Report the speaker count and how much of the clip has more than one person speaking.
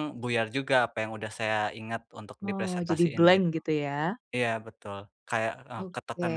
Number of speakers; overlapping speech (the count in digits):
2, about 25%